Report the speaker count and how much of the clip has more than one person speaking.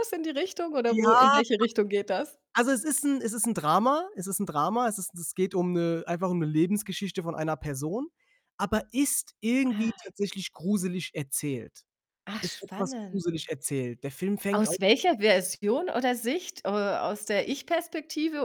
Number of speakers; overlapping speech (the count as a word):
two, about 8%